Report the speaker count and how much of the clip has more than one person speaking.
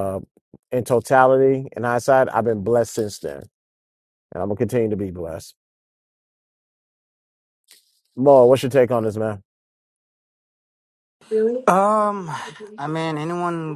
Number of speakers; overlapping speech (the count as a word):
two, no overlap